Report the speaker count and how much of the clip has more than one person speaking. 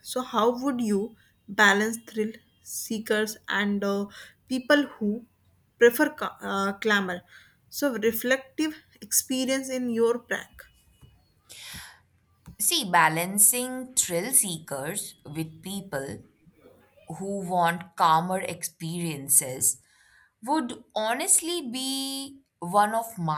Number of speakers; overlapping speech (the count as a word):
two, no overlap